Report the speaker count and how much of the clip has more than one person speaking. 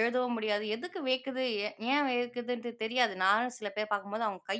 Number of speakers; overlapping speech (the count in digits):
1, no overlap